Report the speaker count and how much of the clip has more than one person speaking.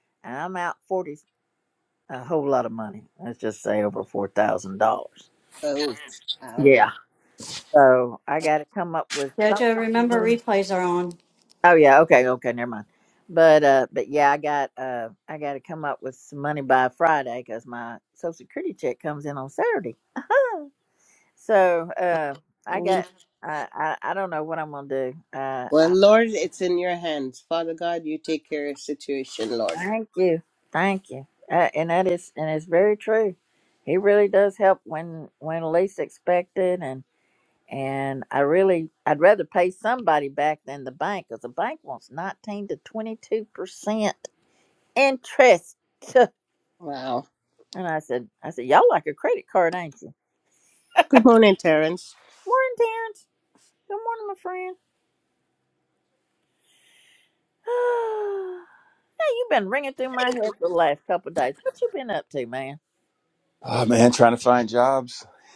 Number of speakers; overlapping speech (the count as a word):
four, about 2%